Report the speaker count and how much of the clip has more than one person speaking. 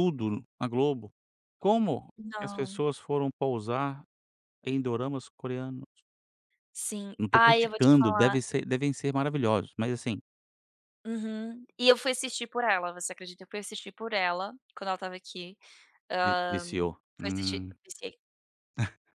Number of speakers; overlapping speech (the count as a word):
two, about 13%